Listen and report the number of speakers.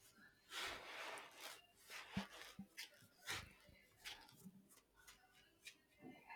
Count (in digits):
0